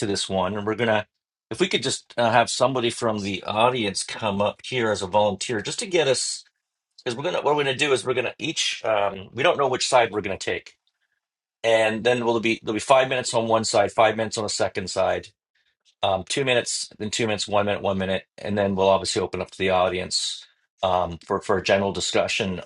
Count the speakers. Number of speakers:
one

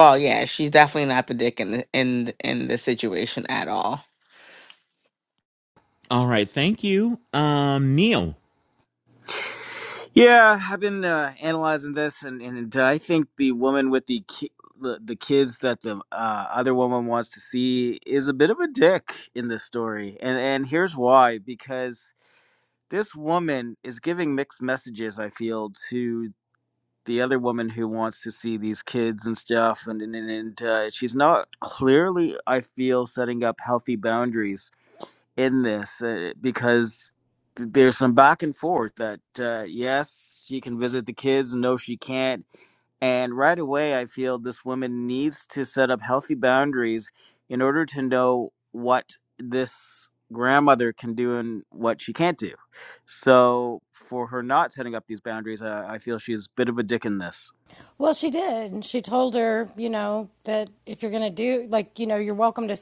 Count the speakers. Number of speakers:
four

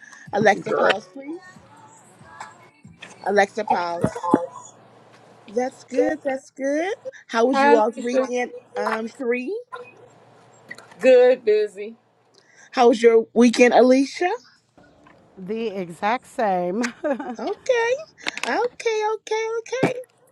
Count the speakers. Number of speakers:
three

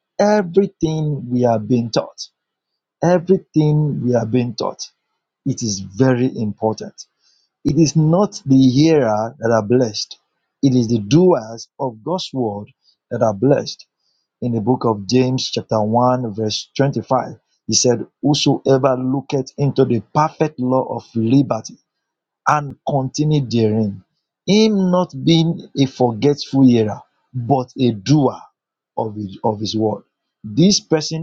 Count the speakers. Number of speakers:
one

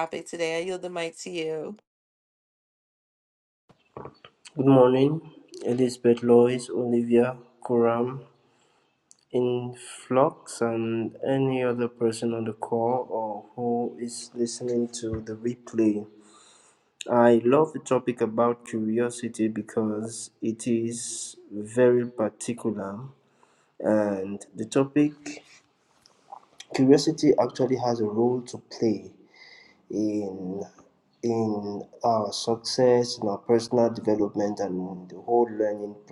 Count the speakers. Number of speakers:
two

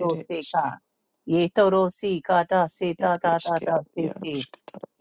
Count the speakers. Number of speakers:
two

